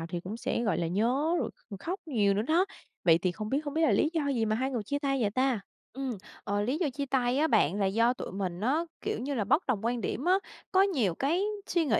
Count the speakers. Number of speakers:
2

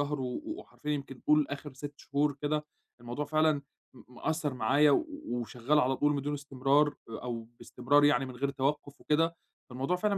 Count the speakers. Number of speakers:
1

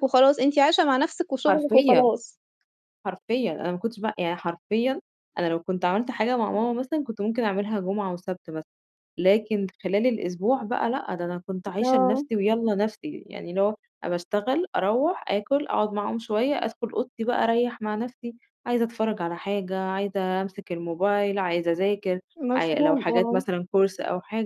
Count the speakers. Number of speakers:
2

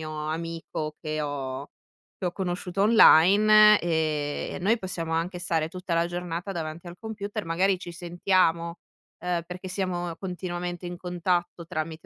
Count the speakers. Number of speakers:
1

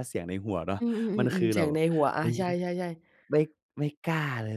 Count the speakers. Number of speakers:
2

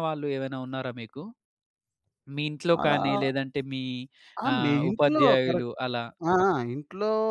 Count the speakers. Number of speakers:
2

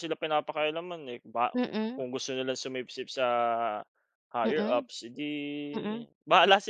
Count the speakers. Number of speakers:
2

